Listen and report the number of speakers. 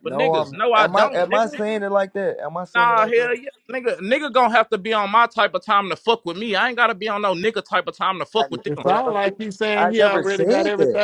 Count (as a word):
three